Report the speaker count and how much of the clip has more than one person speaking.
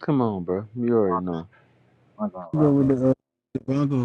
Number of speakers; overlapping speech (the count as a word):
two, no overlap